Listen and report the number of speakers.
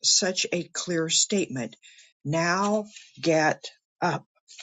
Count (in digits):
1